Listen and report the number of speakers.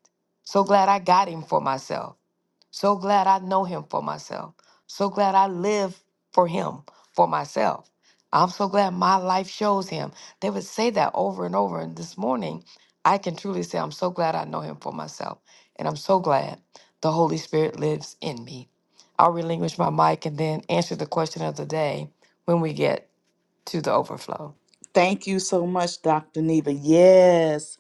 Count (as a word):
two